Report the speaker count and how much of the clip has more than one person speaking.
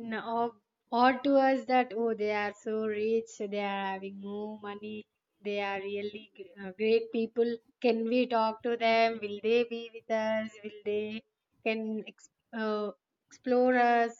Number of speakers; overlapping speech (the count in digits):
1, no overlap